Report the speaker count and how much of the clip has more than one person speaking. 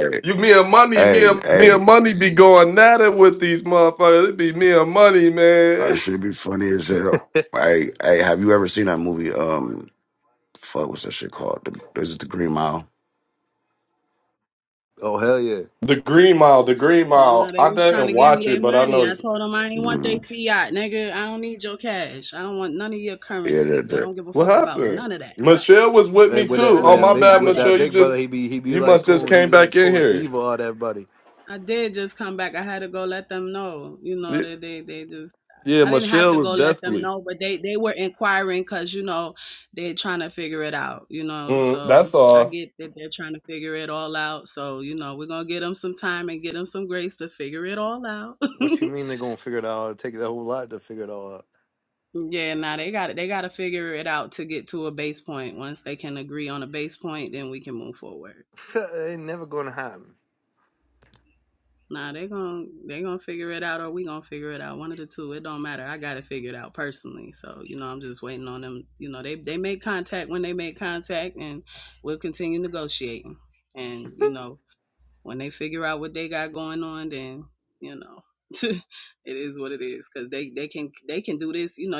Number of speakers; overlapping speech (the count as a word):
four, about 14%